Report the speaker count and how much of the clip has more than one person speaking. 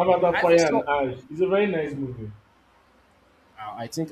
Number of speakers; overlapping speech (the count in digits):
2, about 14%